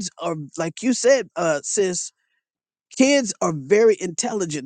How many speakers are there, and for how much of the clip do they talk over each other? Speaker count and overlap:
one, no overlap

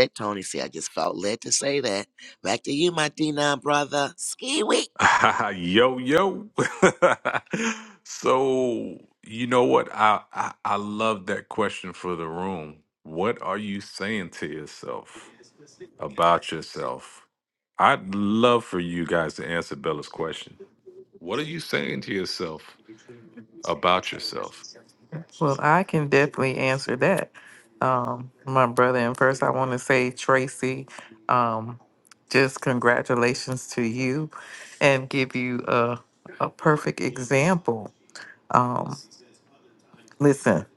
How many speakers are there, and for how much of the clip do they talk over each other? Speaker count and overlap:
three, no overlap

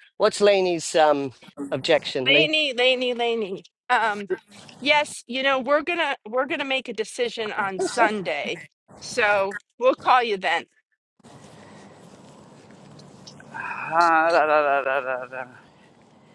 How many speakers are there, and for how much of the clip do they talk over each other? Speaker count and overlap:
three, about 1%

